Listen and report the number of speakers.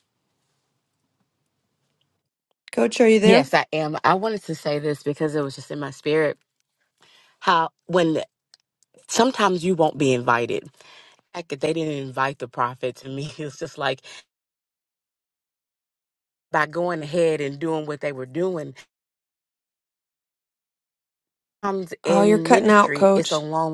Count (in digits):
2